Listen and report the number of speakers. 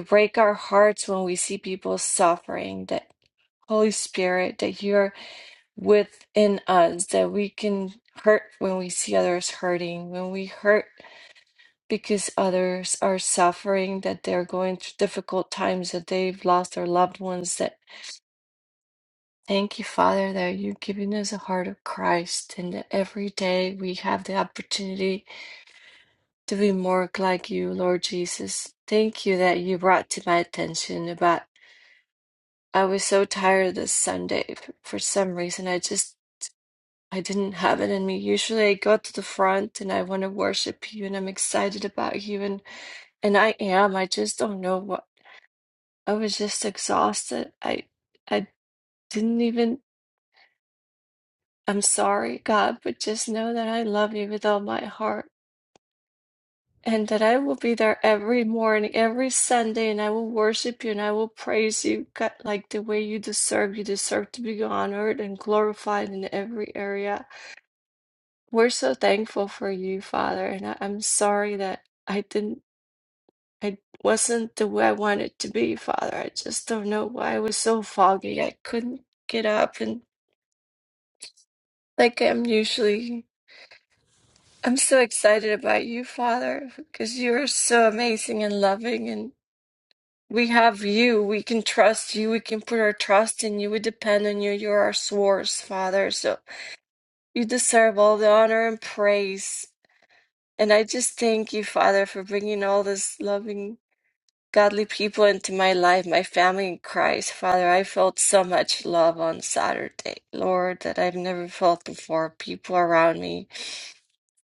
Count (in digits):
1